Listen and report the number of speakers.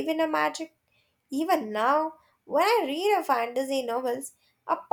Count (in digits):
1